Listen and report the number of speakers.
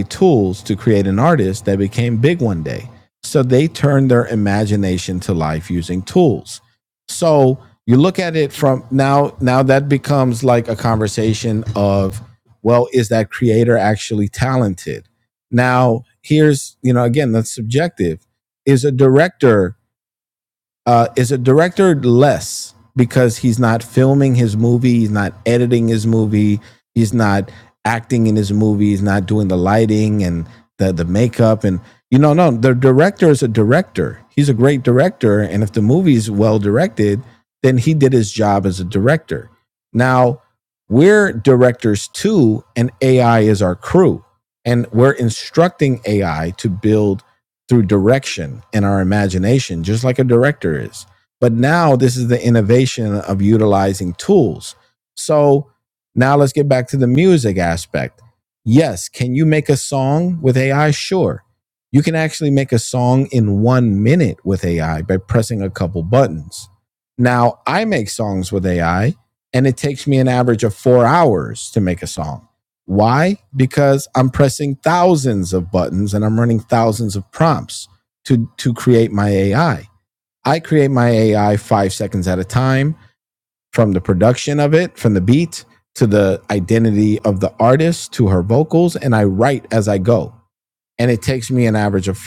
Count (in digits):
1